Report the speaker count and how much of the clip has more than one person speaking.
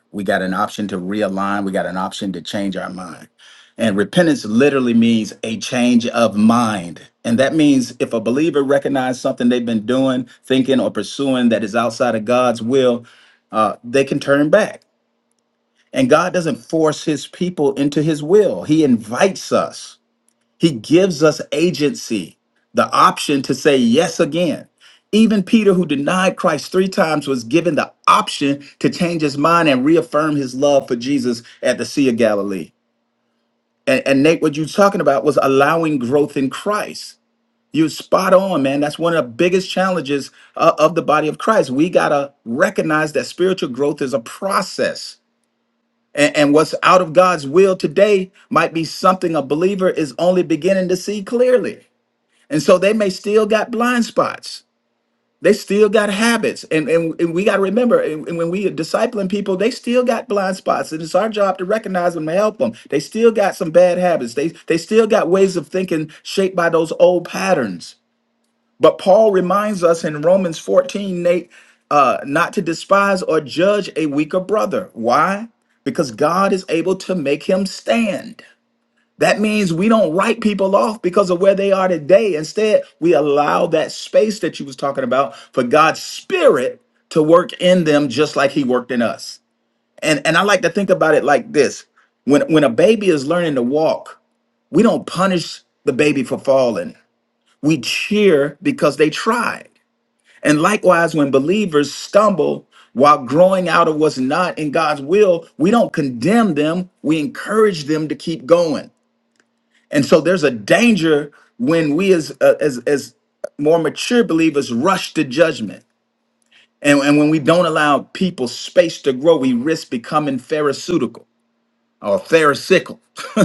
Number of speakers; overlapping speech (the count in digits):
1, no overlap